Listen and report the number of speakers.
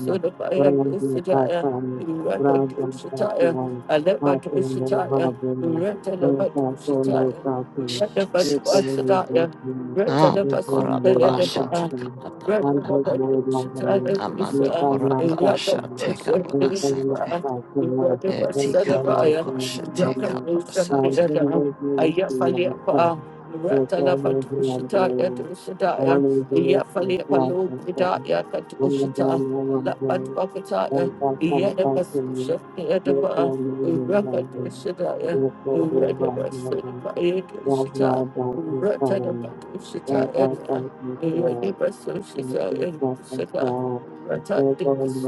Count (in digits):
3